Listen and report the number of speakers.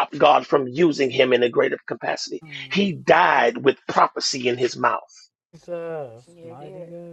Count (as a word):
two